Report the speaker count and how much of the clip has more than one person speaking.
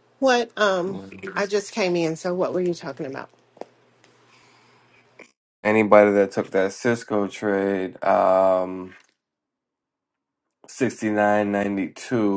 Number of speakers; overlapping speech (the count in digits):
2, about 1%